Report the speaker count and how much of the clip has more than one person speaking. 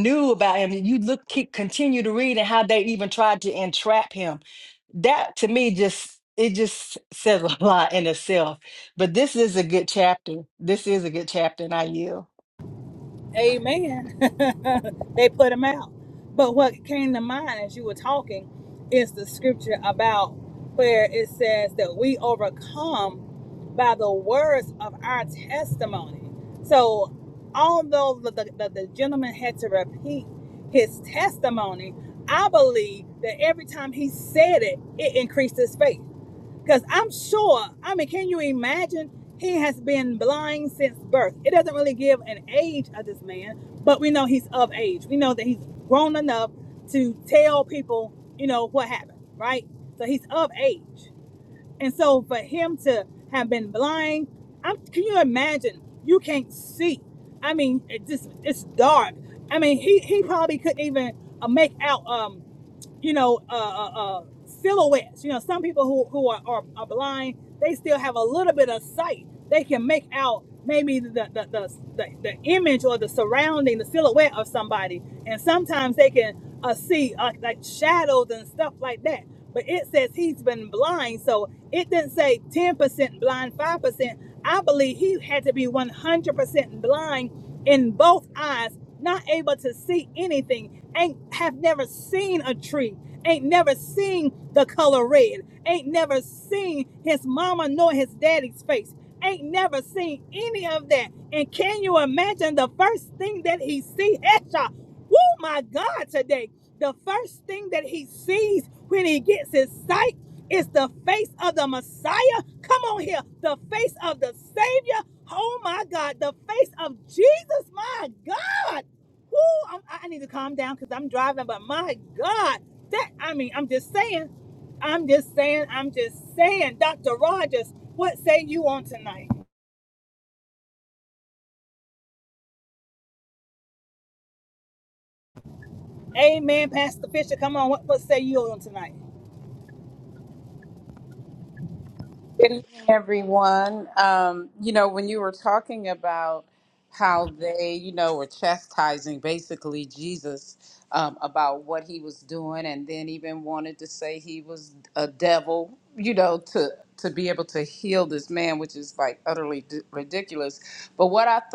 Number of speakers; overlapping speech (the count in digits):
3, no overlap